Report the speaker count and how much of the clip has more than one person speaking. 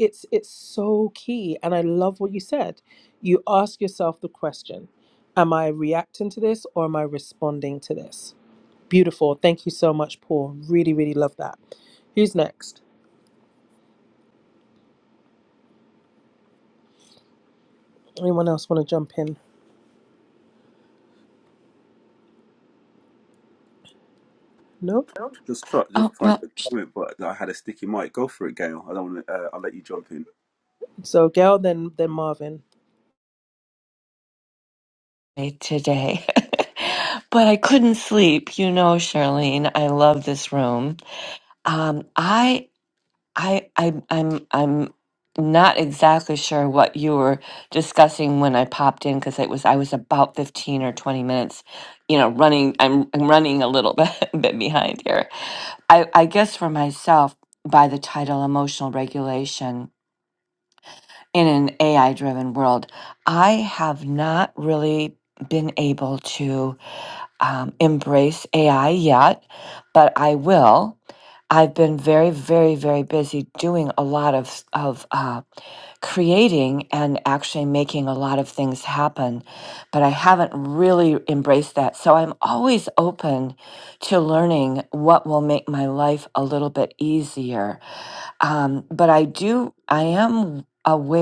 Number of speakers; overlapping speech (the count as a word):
three, about 1%